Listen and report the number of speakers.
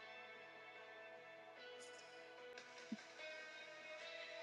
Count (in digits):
0